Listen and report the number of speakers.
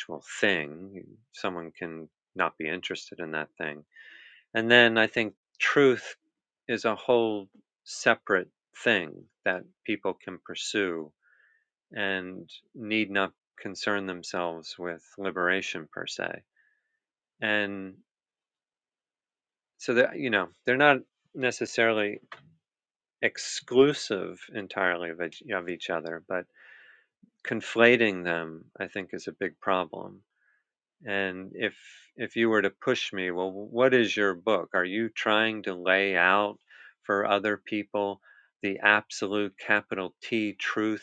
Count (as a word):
one